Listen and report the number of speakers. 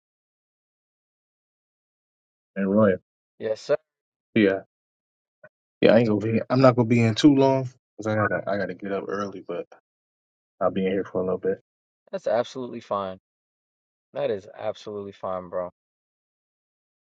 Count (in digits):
2